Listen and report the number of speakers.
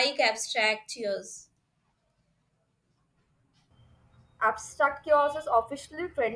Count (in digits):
2